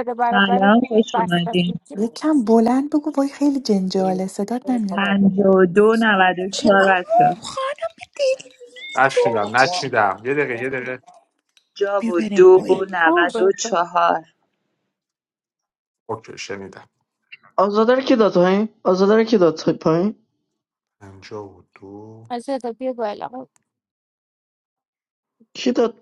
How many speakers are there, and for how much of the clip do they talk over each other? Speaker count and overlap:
six, about 14%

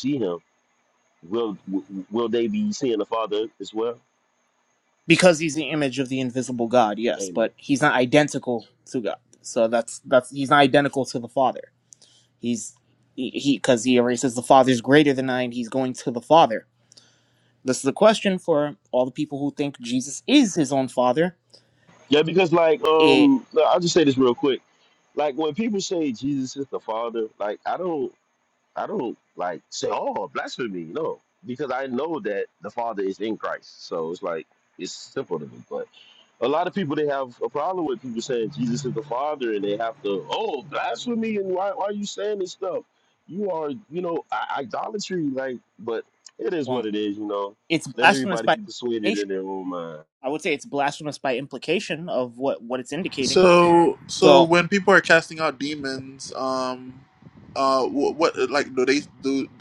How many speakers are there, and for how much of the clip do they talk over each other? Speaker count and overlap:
three, about 3%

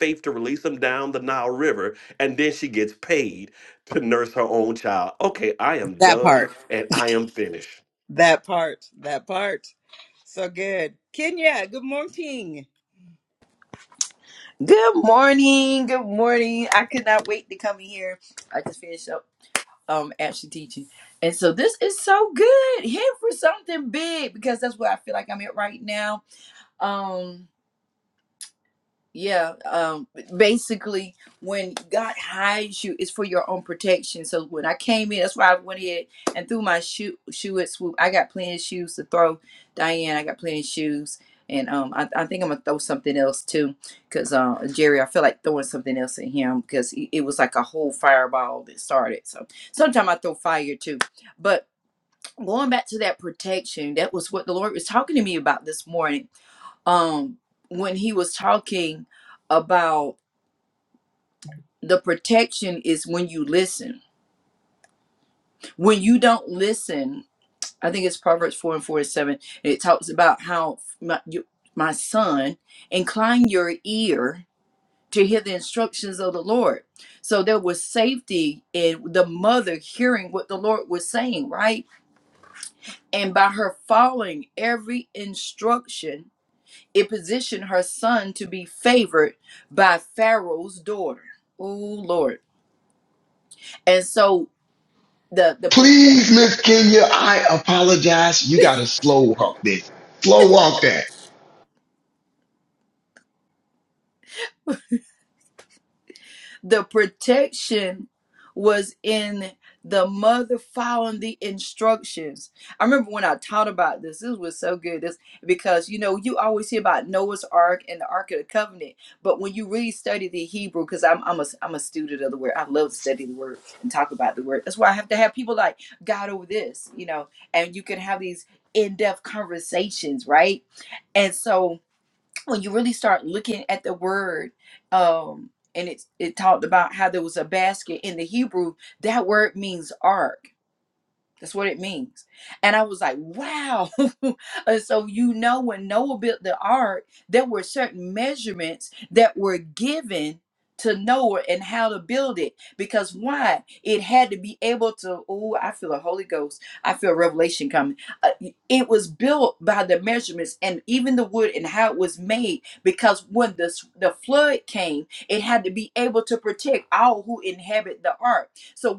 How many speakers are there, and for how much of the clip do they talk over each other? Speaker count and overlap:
four, under 1%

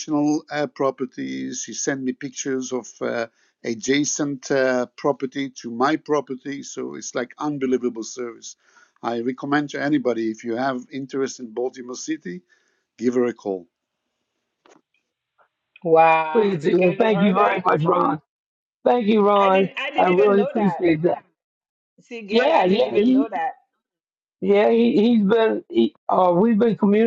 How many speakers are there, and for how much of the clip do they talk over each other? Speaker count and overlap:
three, about 14%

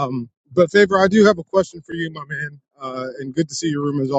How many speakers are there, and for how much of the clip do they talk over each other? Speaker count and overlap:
one, no overlap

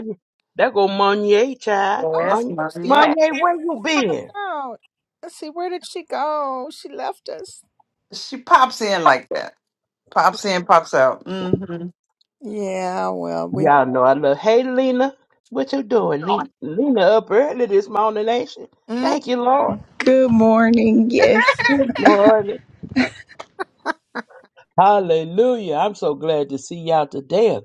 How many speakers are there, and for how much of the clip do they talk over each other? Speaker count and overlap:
four, about 6%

